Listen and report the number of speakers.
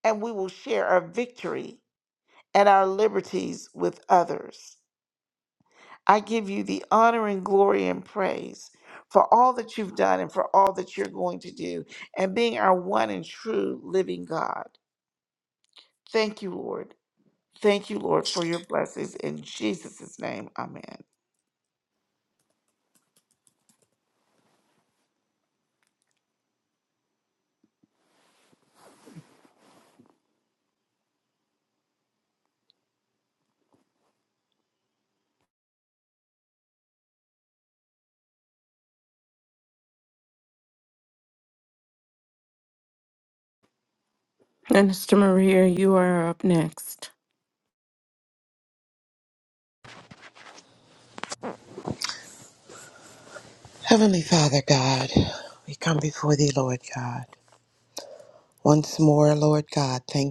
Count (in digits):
3